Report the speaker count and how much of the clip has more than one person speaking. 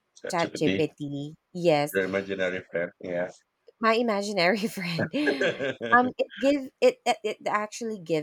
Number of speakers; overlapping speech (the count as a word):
two, about 7%